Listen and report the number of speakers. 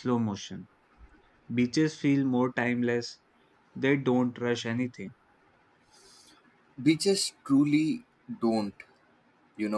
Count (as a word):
two